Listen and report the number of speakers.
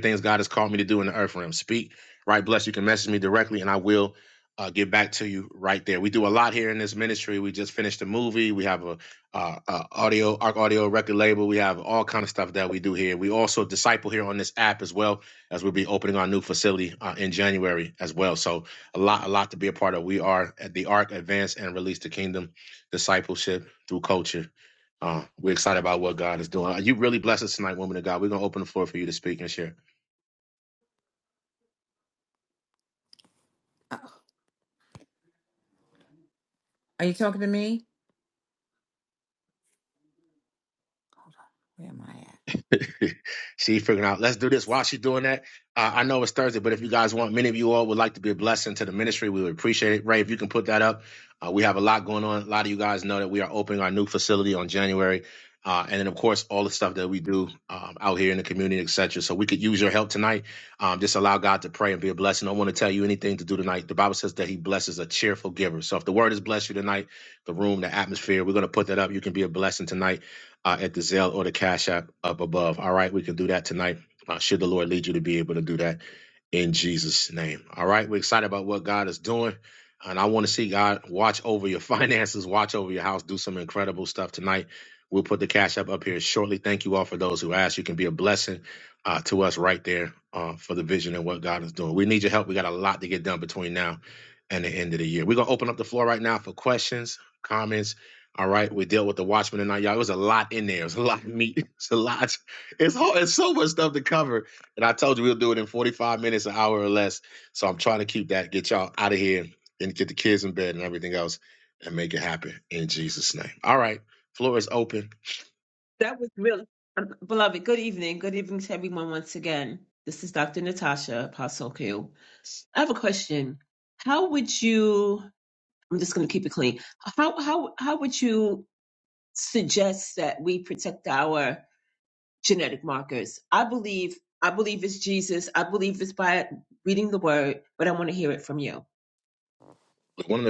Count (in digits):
3